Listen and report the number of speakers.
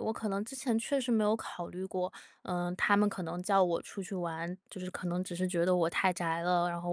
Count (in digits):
1